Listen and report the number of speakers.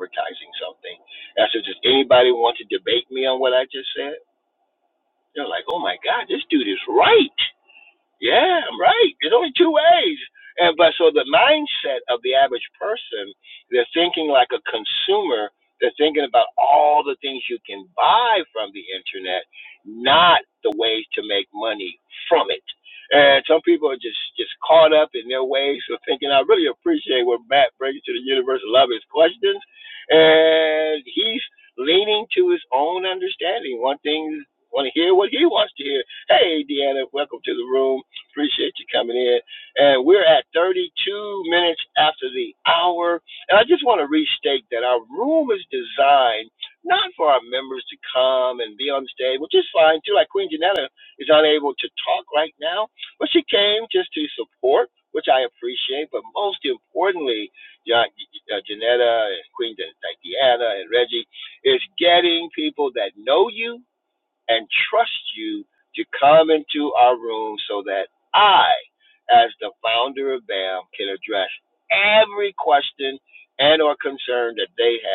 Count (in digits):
1